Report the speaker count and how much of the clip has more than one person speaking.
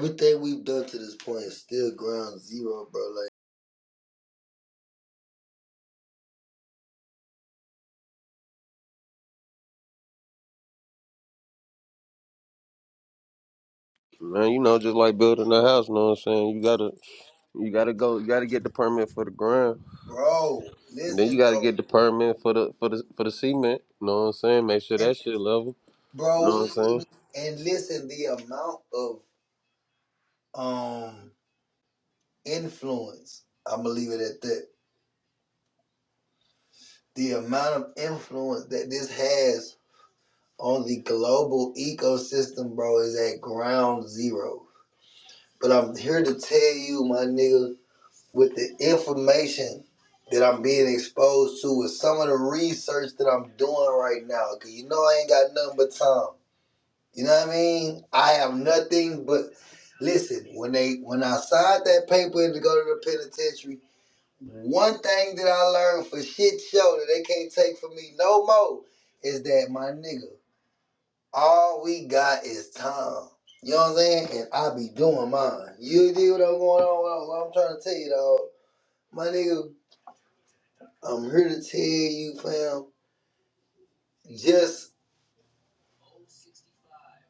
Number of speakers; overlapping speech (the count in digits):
2, about 2%